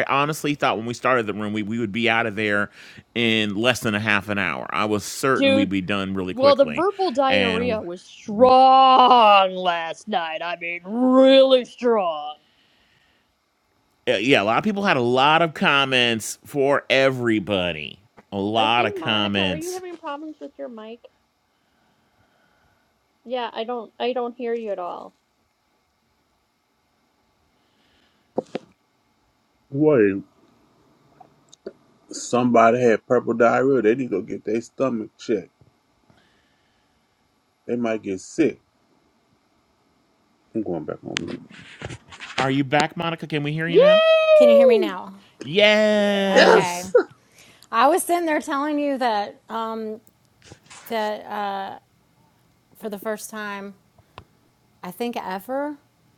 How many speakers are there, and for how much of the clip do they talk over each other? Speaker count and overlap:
4, about 7%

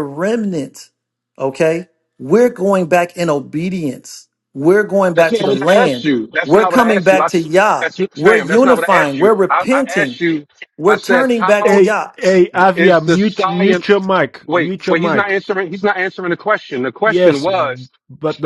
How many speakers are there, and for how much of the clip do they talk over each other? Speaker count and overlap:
3, about 43%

